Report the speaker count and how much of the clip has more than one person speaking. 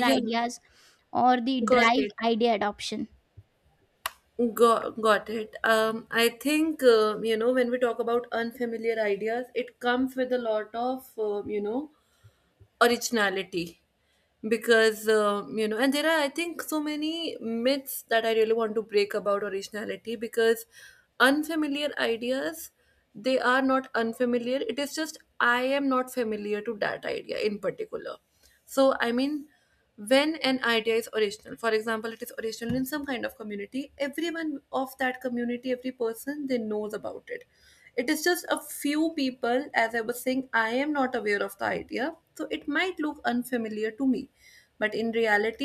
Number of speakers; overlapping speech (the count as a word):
two, about 2%